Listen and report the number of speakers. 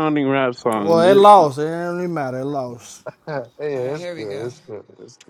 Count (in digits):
3